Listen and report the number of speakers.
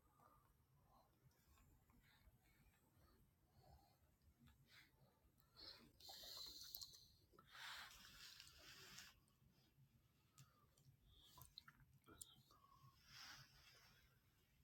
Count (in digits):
0